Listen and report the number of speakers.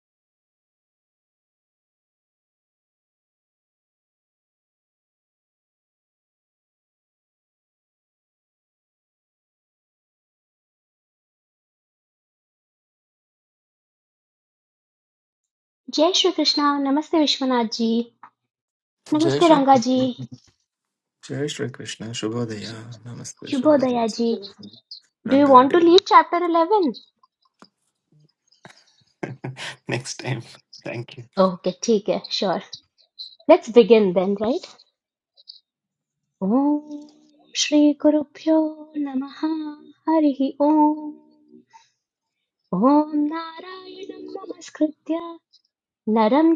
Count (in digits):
2